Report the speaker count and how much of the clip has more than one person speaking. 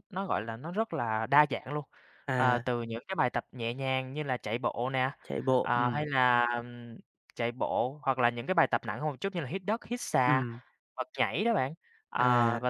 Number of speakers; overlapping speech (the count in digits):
2, about 10%